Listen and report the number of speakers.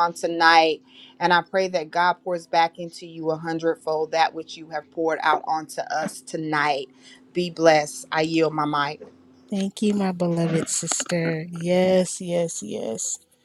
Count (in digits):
2